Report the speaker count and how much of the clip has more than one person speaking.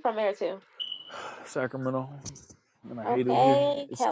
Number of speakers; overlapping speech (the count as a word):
two, about 26%